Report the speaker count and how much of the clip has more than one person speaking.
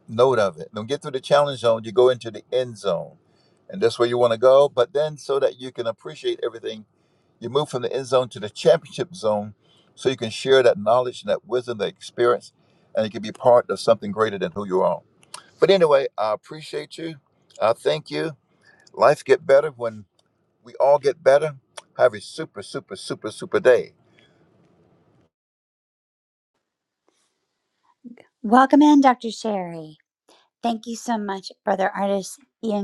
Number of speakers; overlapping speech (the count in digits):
2, no overlap